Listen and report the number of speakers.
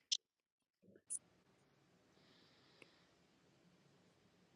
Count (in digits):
0